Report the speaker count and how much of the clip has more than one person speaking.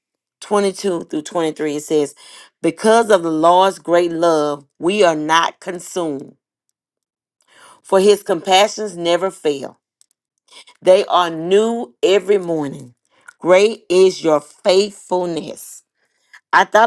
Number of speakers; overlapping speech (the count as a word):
one, no overlap